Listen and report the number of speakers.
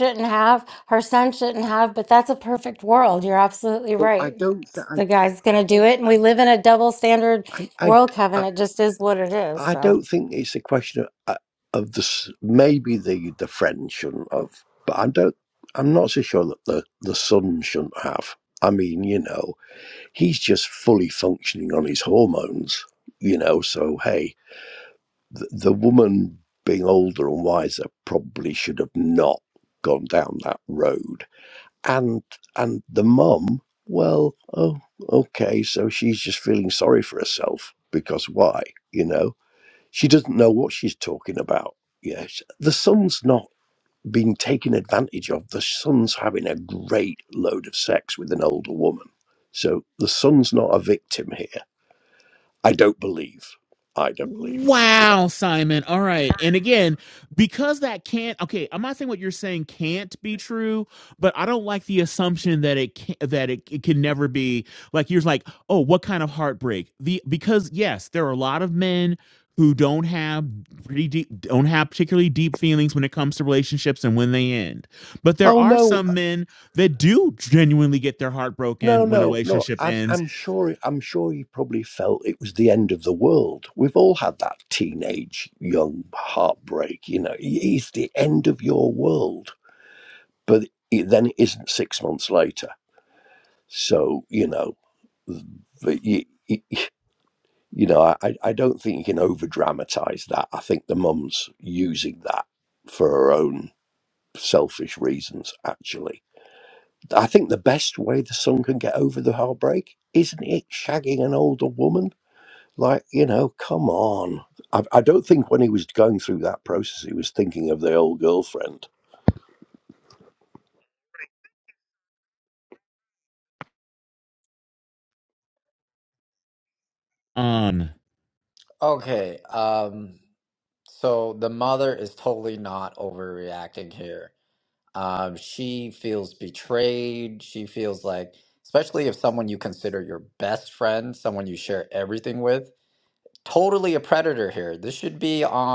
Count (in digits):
4